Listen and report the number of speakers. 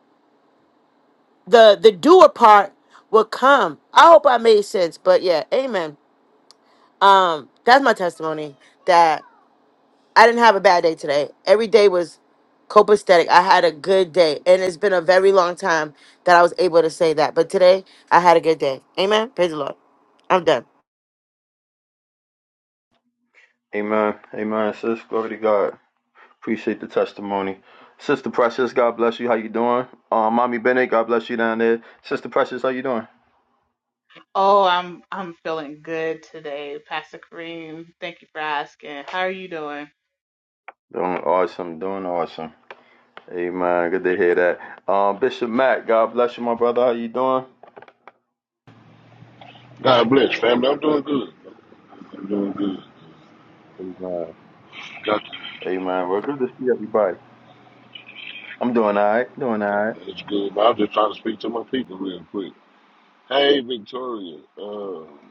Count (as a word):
four